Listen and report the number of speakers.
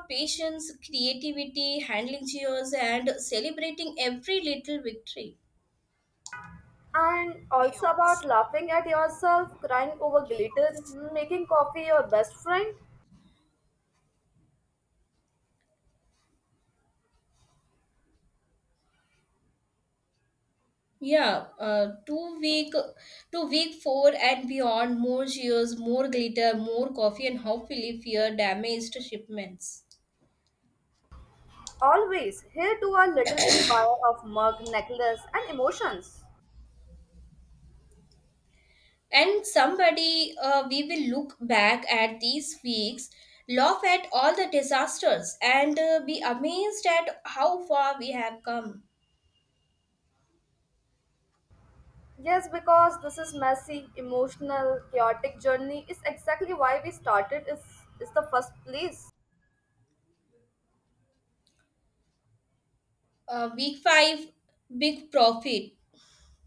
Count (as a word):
two